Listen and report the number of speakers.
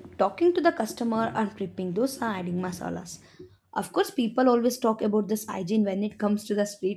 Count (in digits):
1